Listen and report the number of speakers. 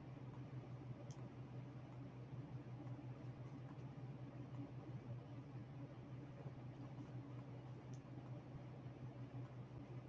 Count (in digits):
0